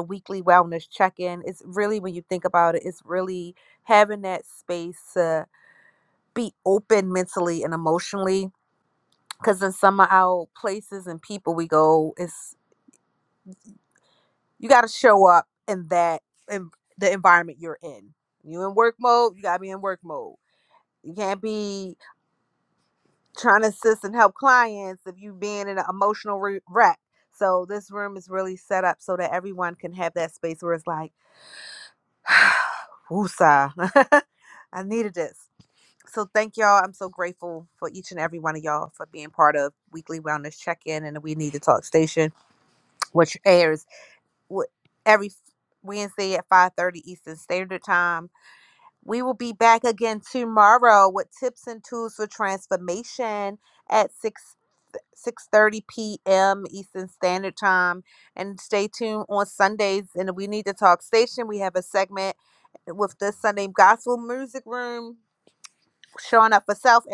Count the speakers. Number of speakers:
1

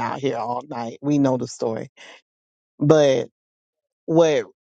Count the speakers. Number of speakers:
1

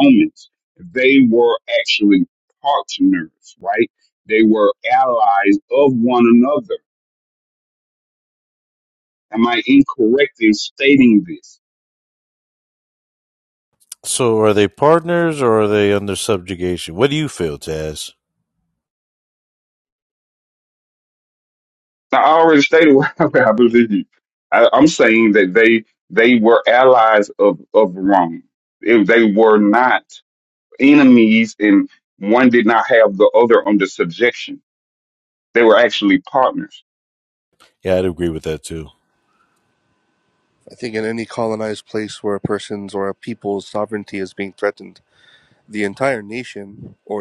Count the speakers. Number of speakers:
3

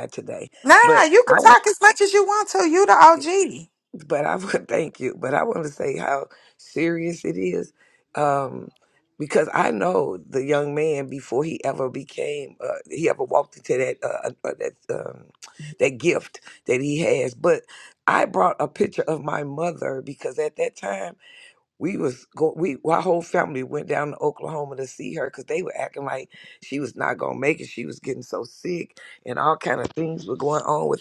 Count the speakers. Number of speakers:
2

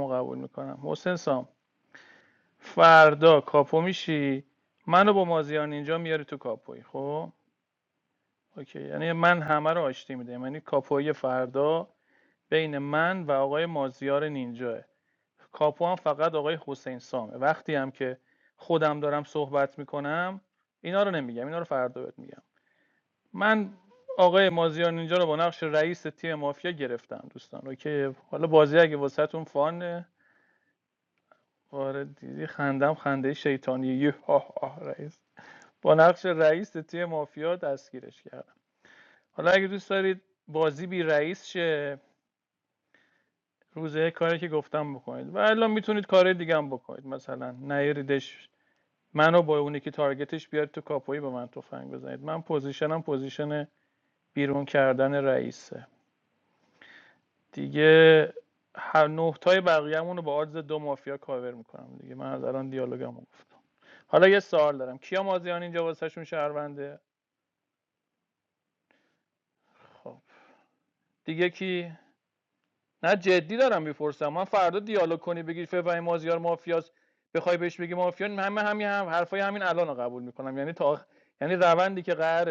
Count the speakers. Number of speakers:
1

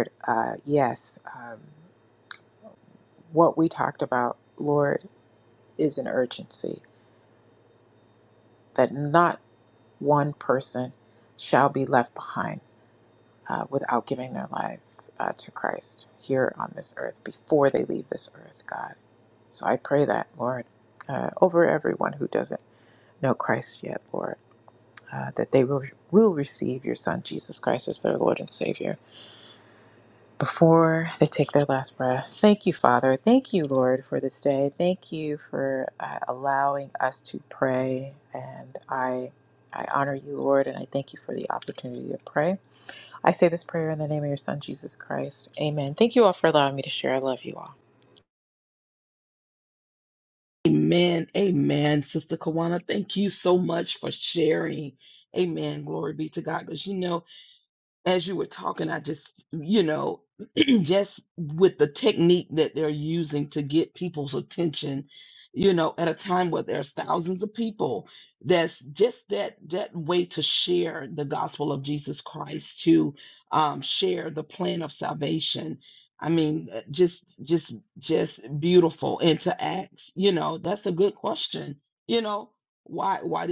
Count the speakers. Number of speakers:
2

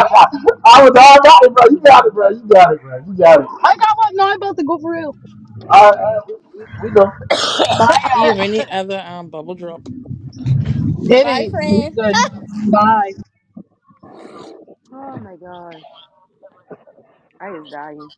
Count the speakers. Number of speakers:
4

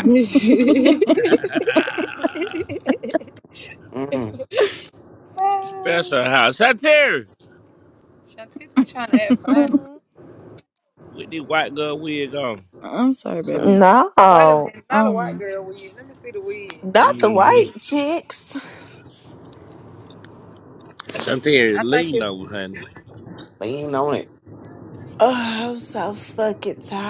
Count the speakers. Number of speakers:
5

